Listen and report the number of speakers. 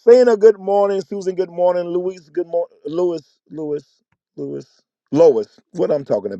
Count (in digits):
1